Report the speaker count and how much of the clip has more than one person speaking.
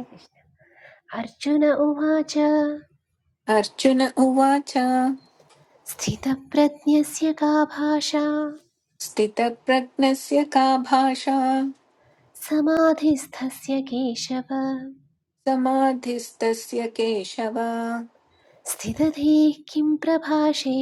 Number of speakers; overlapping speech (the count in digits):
2, no overlap